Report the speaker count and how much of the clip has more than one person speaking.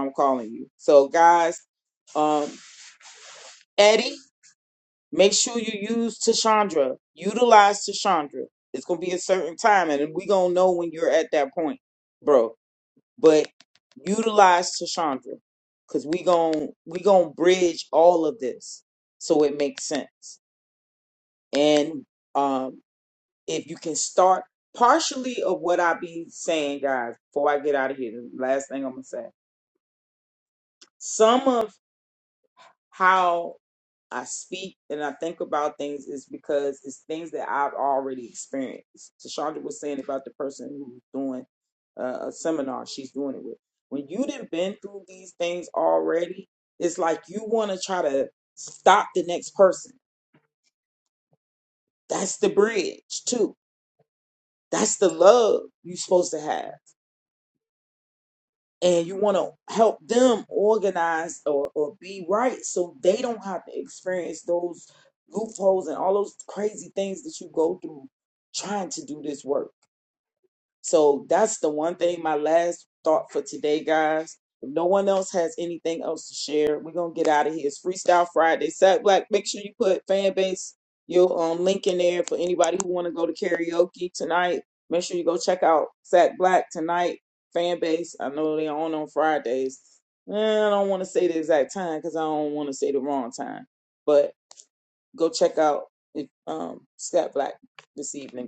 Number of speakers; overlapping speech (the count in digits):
1, no overlap